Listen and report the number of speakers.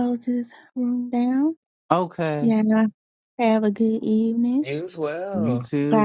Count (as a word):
three